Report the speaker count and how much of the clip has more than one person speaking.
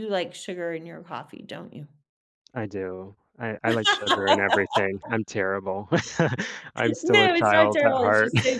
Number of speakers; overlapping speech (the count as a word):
two, about 16%